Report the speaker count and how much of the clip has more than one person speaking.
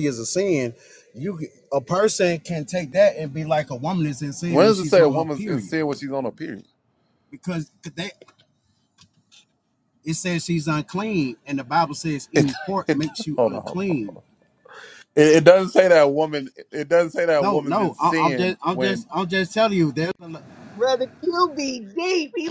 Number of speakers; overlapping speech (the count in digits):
3, about 18%